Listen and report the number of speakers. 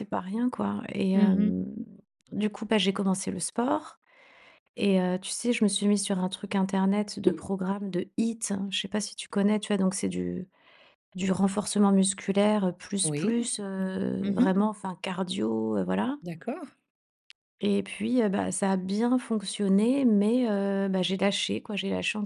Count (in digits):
2